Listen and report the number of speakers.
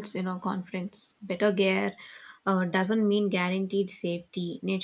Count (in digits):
1